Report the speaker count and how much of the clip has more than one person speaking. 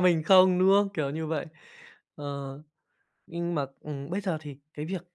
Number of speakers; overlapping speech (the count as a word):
one, no overlap